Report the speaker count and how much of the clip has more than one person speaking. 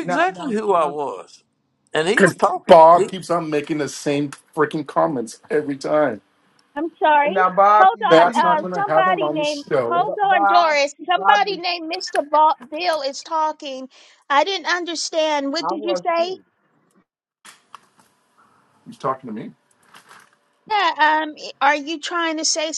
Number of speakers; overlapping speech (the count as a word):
four, about 26%